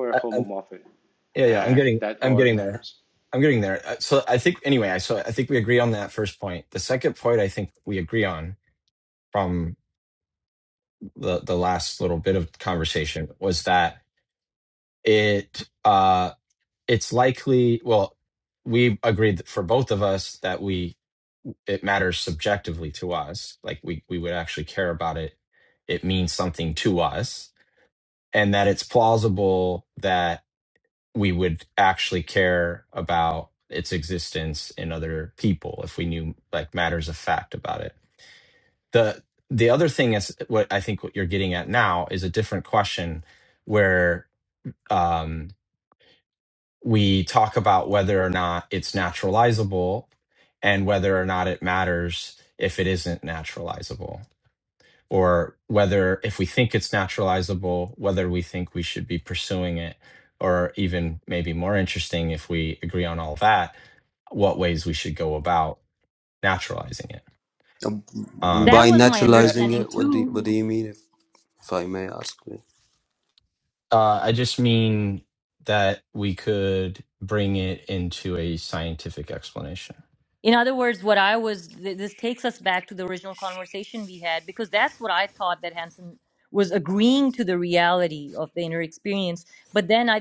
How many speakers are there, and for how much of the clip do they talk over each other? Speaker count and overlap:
four, about 4%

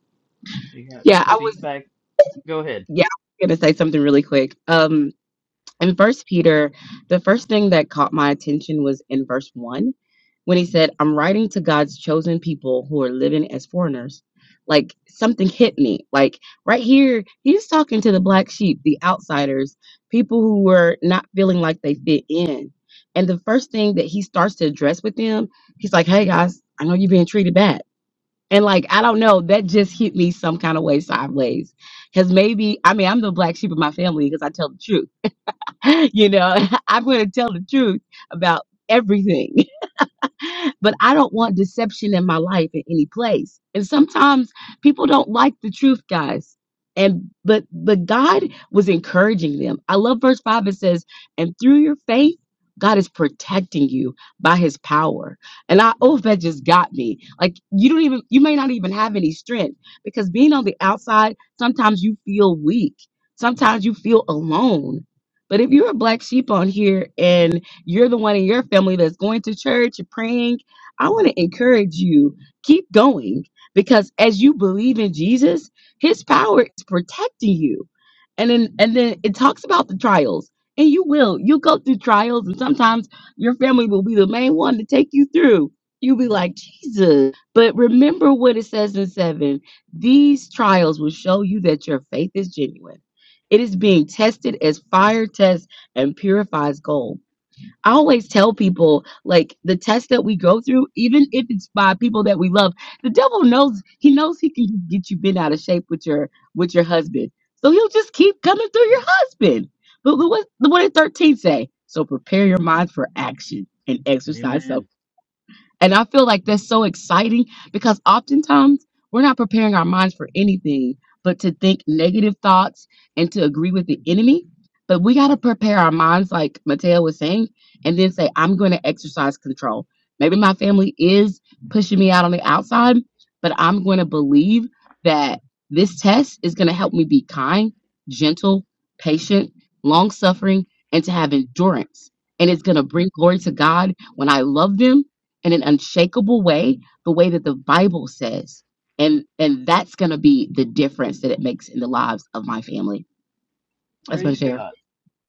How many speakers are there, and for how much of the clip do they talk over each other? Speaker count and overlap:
two, about 1%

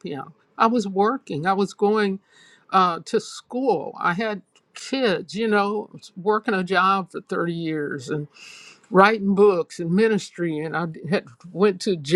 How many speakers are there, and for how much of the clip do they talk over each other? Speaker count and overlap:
one, no overlap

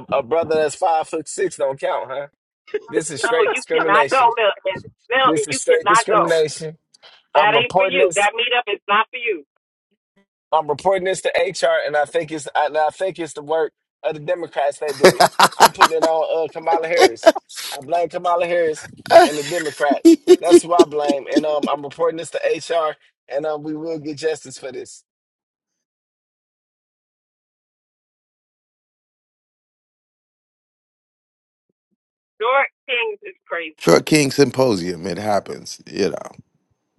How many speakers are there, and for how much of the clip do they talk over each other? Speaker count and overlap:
three, about 8%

